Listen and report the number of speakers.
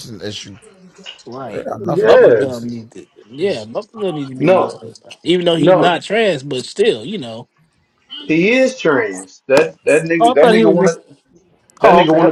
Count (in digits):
3